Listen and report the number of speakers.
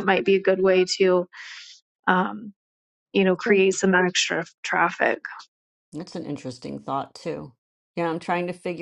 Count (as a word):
two